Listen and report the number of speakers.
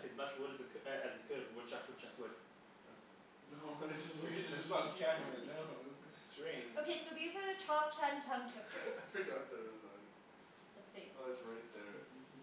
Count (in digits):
4